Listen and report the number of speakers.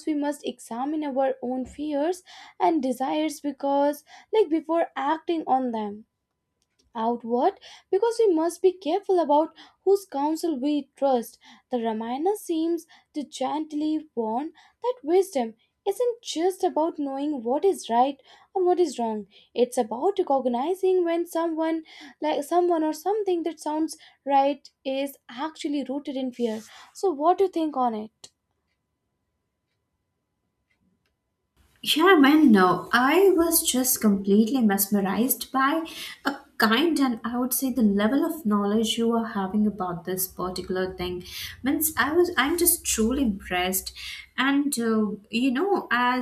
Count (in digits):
2